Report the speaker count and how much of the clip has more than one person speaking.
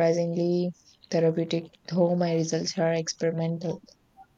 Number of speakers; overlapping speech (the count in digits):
1, no overlap